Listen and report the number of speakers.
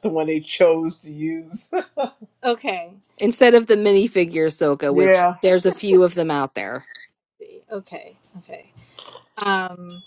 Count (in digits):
3